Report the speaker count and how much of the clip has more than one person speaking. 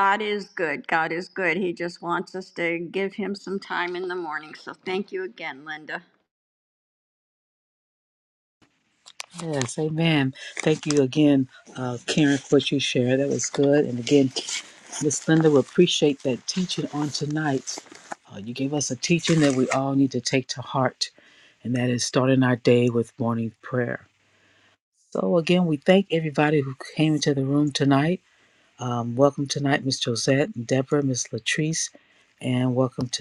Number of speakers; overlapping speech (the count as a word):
two, no overlap